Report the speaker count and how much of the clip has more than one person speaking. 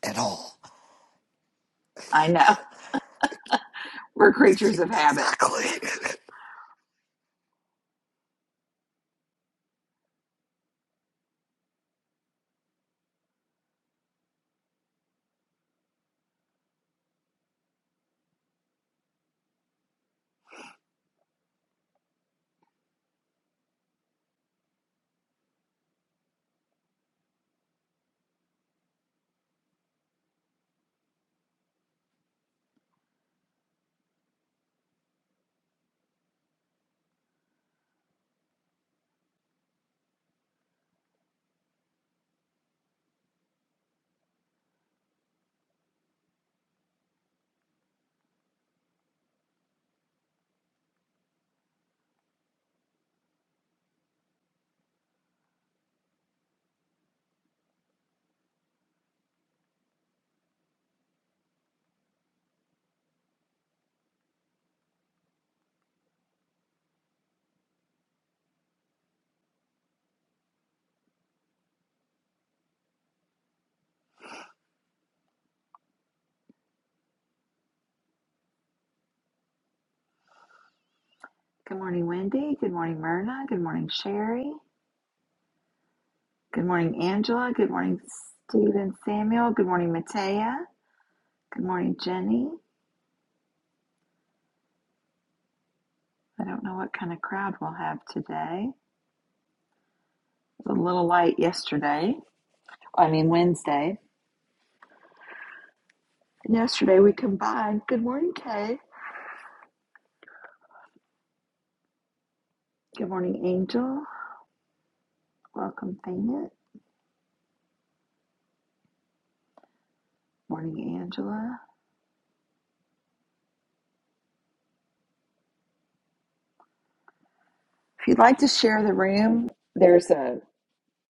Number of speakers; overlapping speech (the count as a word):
two, under 1%